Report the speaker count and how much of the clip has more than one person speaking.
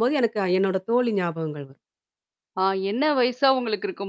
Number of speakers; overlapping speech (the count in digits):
2, no overlap